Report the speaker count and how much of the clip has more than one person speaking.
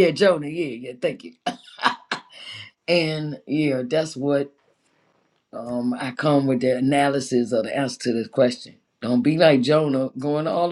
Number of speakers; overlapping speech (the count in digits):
1, no overlap